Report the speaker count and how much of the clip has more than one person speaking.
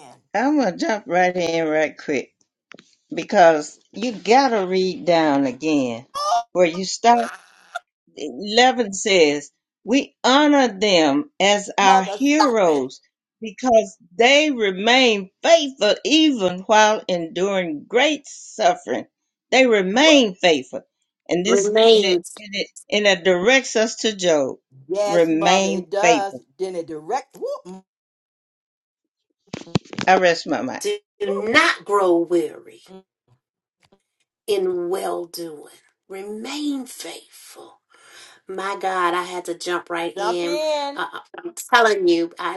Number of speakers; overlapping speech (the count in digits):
3, about 8%